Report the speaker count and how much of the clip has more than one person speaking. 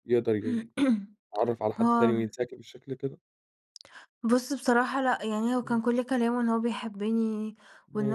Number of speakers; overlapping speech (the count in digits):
2, about 9%